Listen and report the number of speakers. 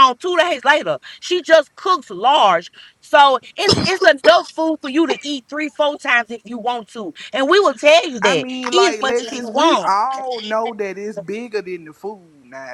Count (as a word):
two